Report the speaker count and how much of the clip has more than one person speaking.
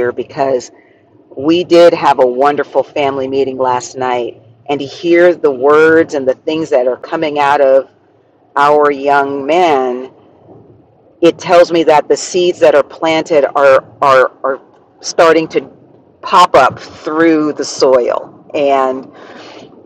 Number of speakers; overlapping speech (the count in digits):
1, no overlap